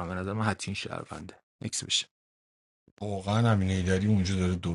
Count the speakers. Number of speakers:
two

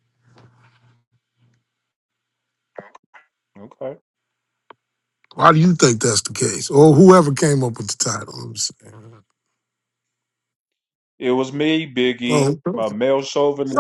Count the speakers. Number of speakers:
two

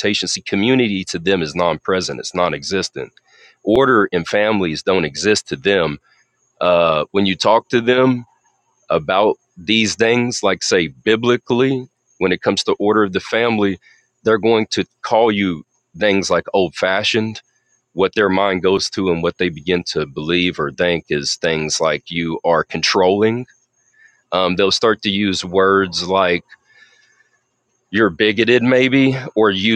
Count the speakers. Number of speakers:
one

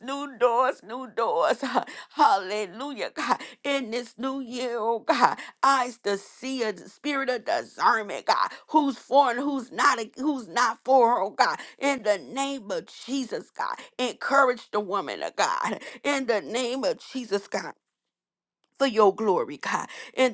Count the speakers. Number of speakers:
one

